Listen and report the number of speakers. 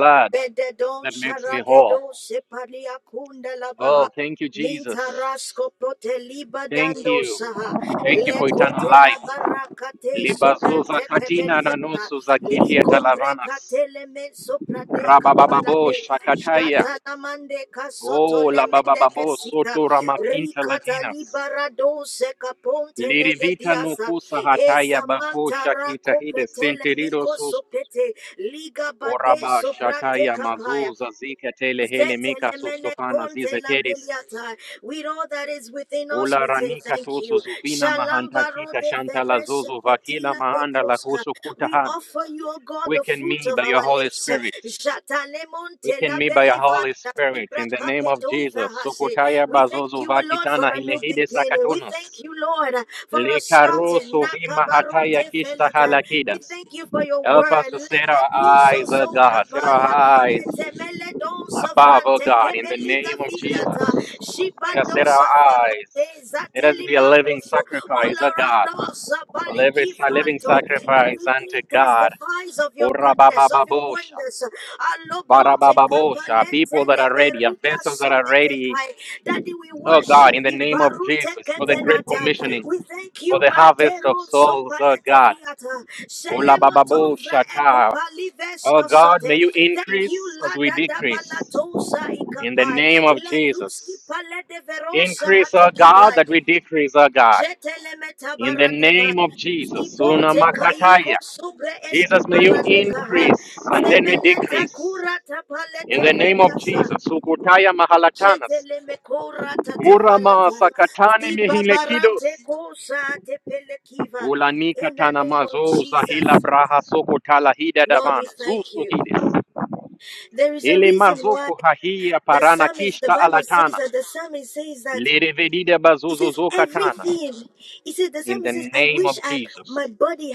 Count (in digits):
2